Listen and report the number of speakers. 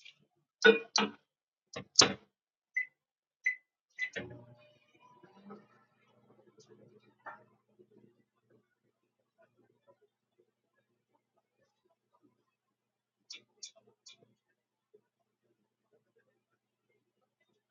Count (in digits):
0